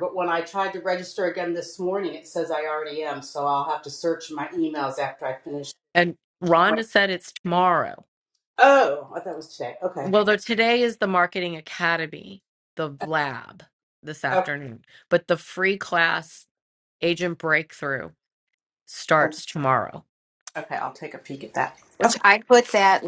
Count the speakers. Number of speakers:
three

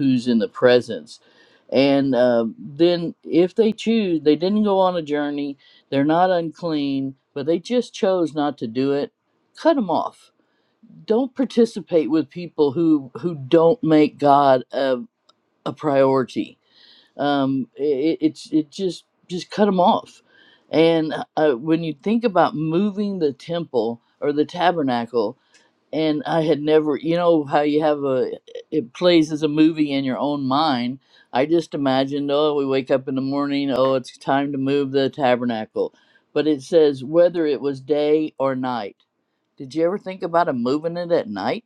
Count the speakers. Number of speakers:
one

